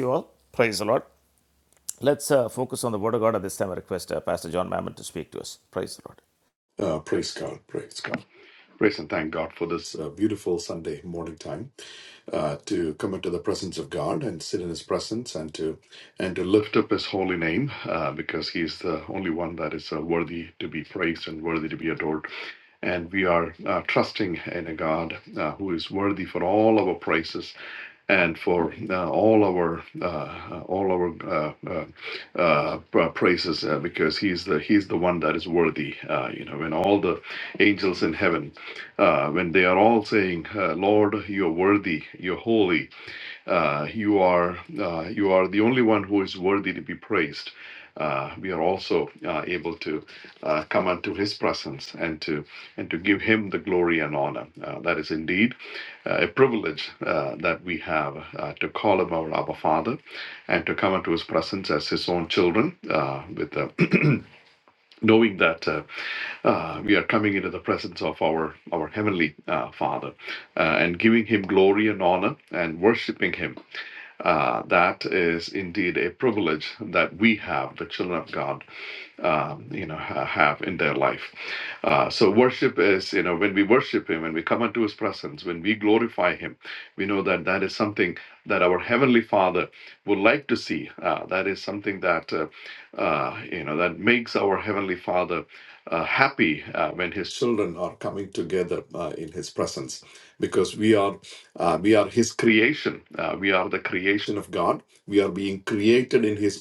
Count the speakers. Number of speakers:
2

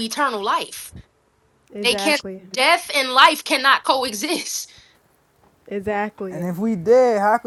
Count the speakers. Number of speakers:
3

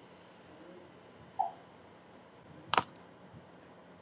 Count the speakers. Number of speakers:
0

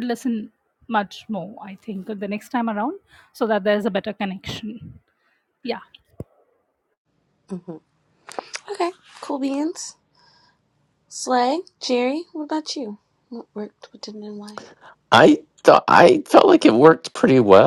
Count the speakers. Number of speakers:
3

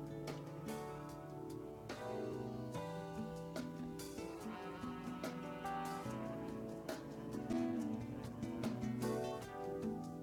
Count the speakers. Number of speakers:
0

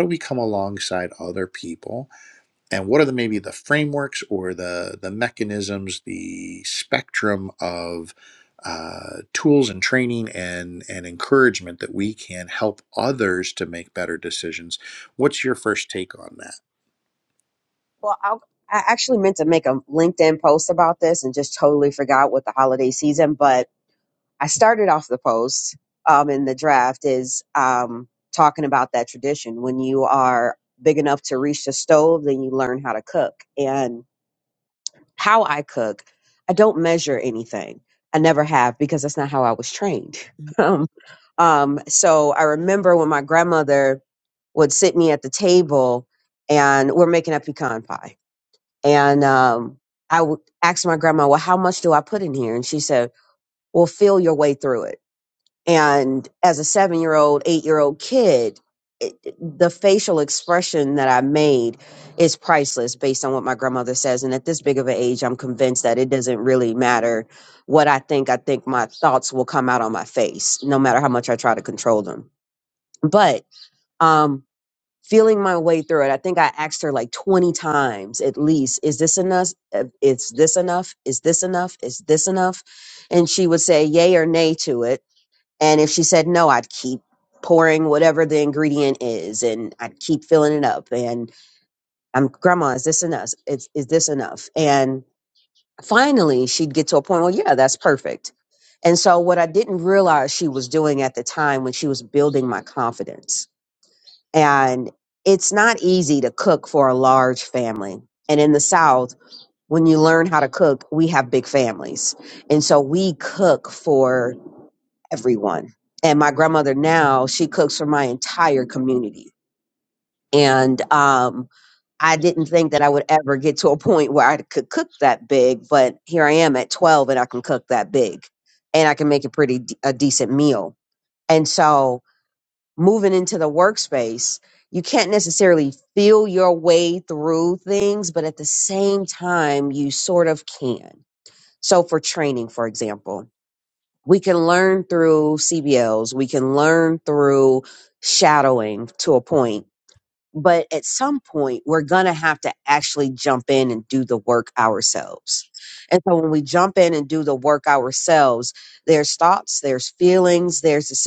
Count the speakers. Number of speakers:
2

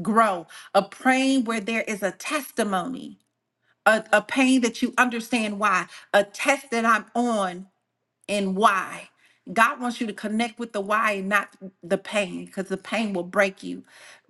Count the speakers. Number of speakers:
1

